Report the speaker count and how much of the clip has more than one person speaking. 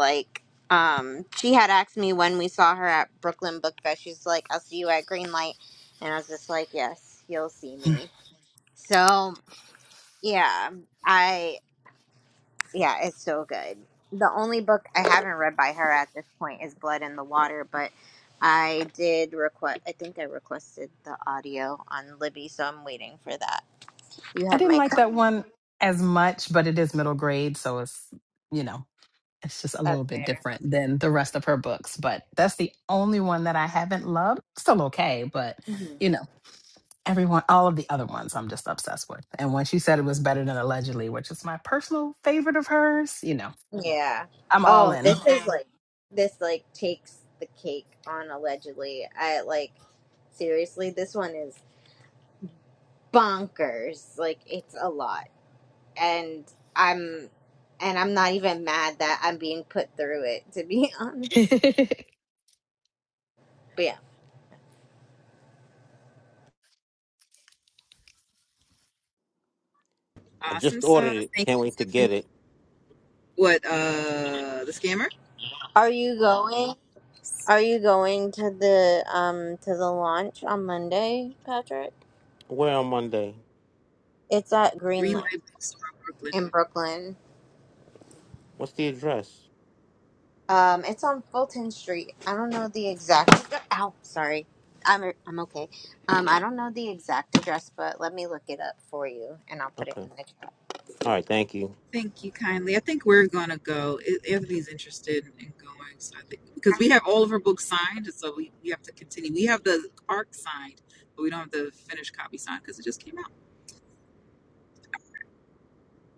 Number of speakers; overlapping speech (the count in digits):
4, about 3%